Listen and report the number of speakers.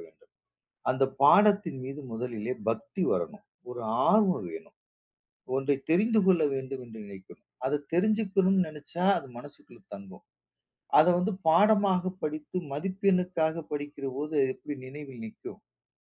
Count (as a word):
one